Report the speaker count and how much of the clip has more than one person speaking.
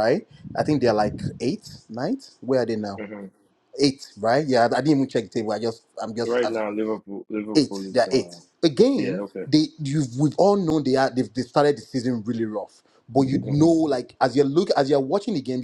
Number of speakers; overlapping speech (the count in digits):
2, about 10%